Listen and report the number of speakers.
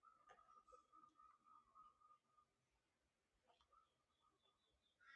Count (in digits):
0